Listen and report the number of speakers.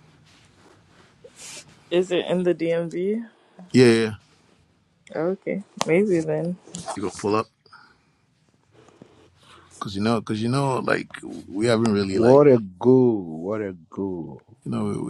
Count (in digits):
3